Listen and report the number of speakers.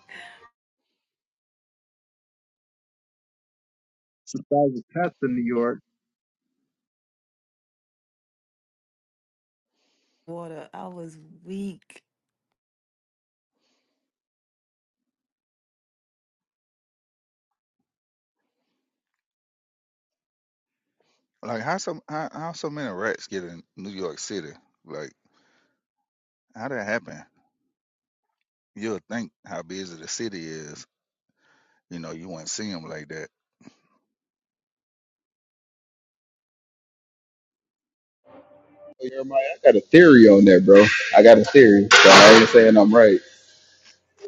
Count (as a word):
four